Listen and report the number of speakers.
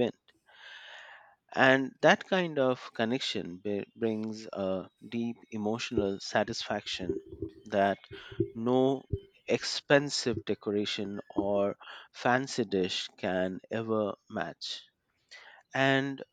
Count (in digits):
1